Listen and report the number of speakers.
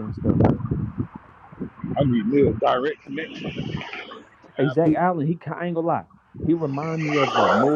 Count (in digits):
2